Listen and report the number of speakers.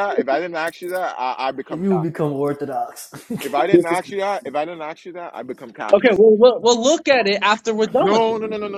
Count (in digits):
3